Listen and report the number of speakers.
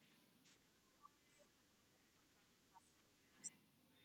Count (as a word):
zero